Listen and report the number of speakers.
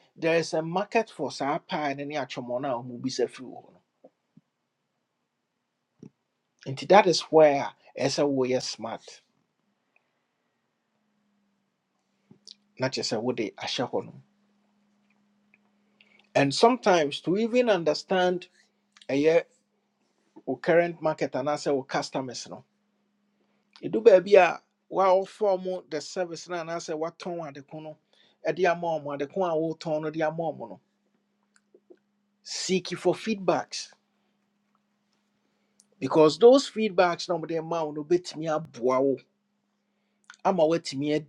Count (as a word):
one